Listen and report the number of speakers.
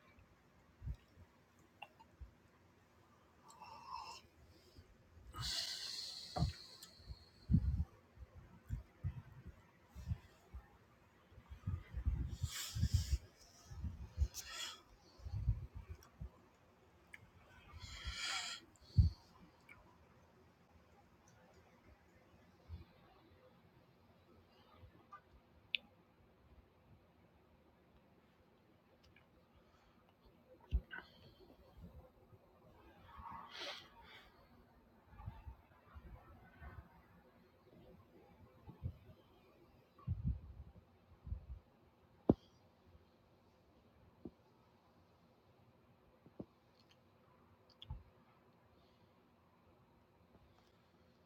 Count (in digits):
0